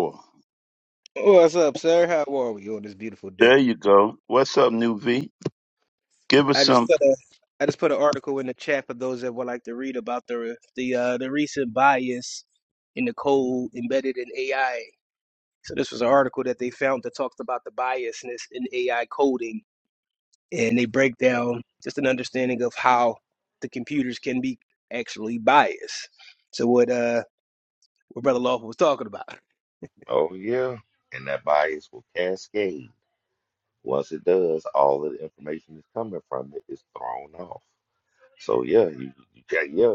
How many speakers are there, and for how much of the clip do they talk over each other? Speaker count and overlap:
3, about 1%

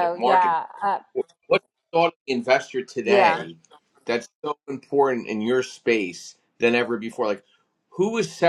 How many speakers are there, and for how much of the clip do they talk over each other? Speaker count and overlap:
2, about 11%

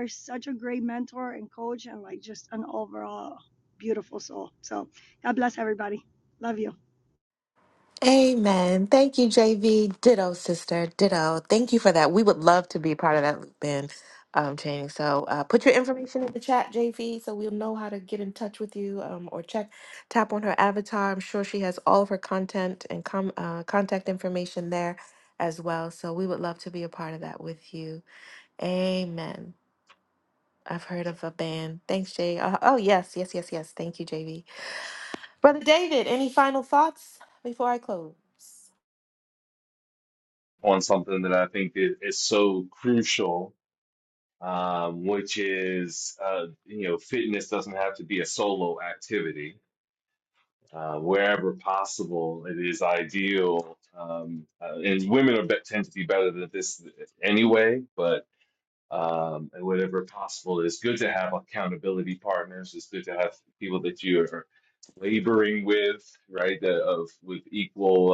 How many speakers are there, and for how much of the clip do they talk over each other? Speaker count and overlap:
3, no overlap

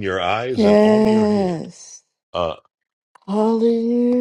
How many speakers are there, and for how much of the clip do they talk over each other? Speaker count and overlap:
2, about 24%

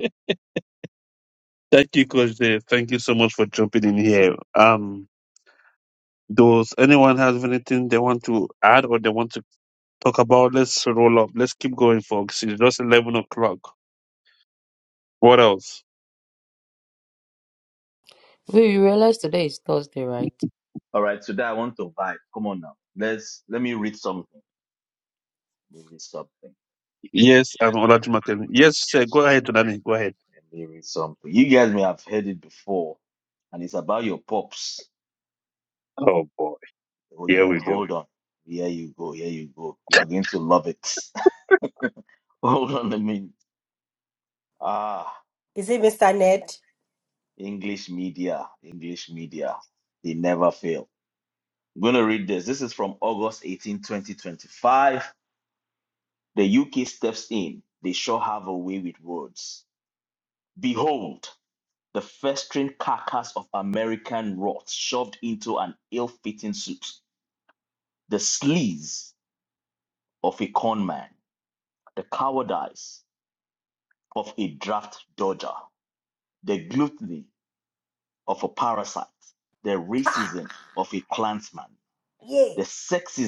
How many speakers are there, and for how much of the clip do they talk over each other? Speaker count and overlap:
4, about 1%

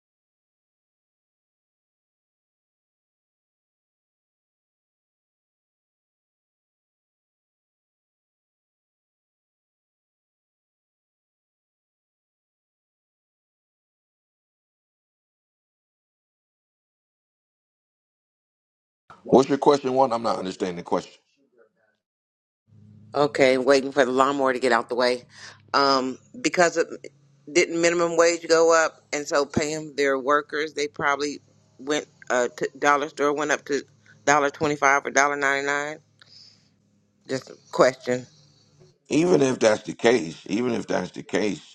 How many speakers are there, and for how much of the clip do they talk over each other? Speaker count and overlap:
2, no overlap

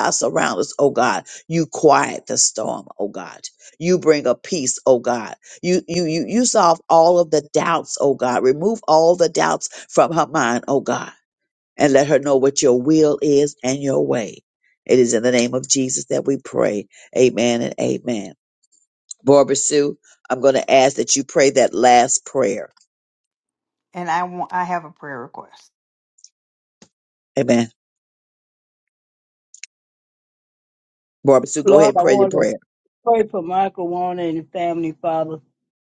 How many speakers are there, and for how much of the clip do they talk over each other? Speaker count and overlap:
3, about 2%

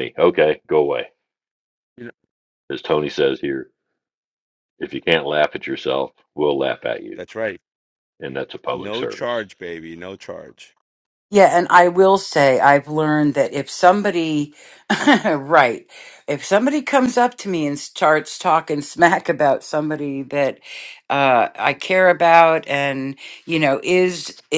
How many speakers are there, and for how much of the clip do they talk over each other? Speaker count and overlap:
3, about 3%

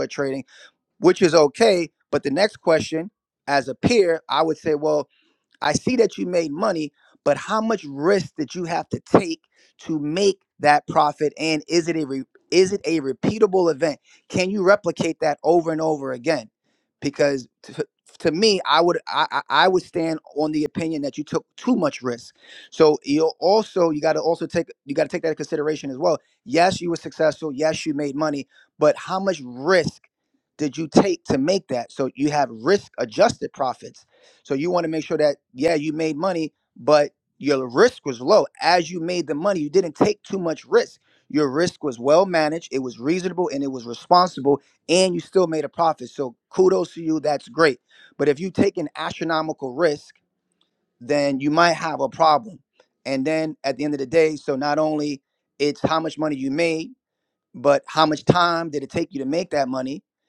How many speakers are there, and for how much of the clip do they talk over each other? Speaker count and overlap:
1, no overlap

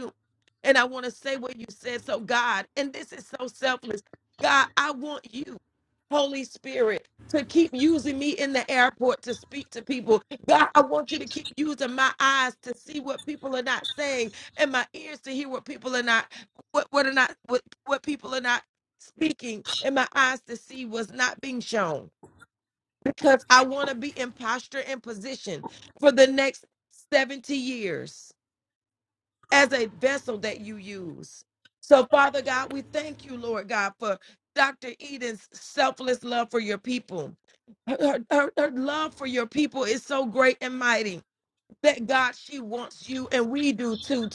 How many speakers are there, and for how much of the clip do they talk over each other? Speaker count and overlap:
1, no overlap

